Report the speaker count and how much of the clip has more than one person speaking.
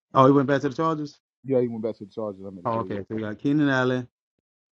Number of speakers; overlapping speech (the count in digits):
2, about 7%